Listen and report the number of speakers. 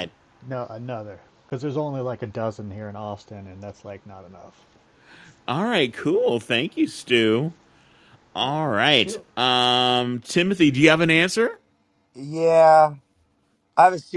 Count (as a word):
three